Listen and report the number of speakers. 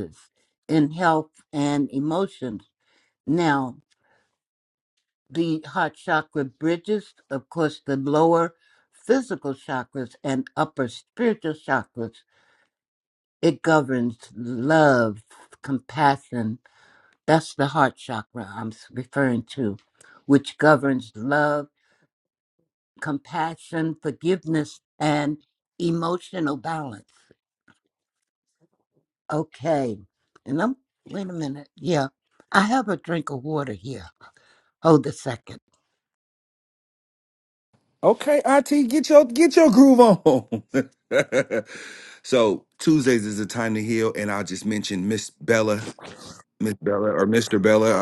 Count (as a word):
two